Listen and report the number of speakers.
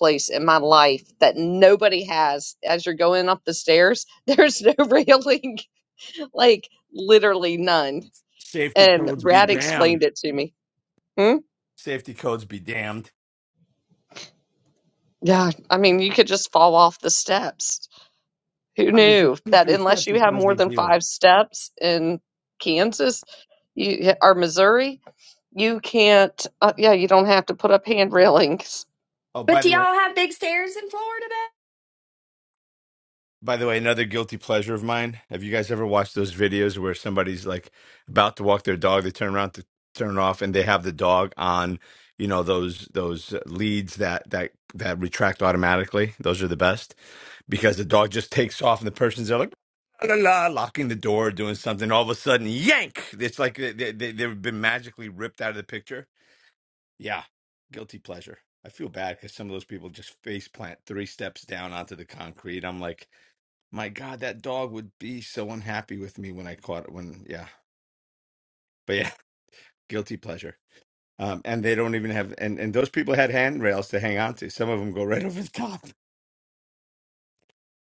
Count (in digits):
3